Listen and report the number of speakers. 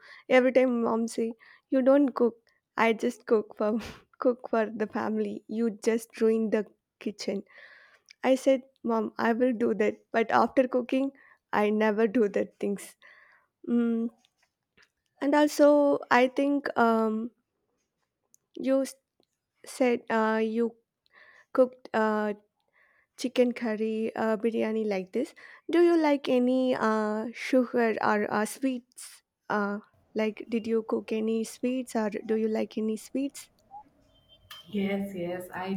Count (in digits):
2